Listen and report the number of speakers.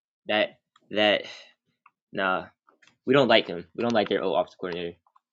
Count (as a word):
one